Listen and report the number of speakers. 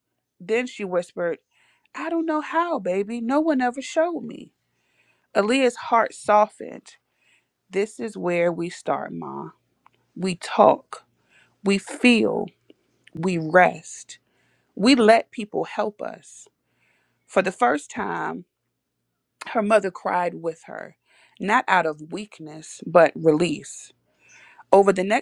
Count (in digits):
1